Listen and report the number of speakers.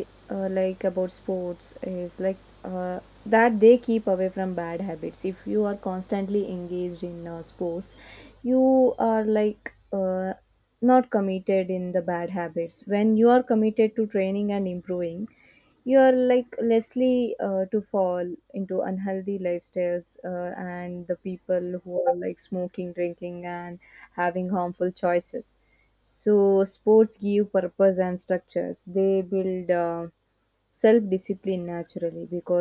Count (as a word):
one